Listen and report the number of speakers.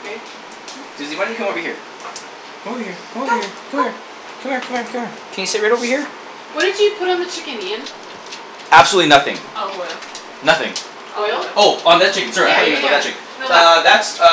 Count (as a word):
three